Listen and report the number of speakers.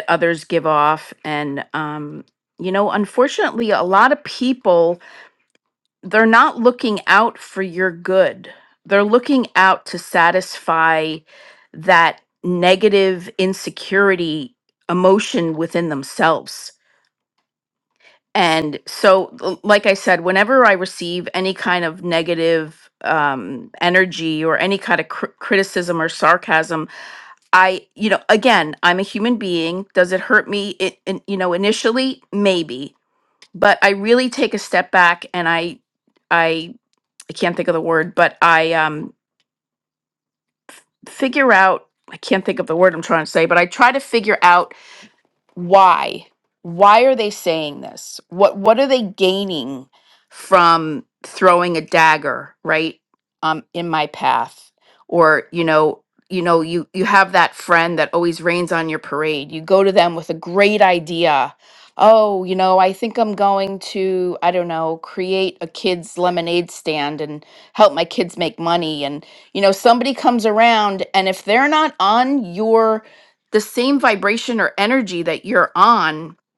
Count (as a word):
one